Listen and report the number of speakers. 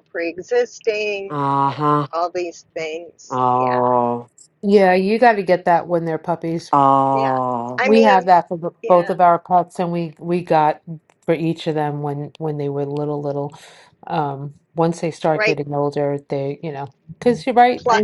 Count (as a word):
three